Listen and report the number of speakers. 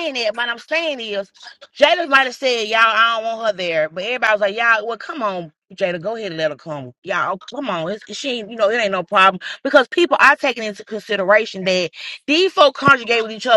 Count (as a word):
one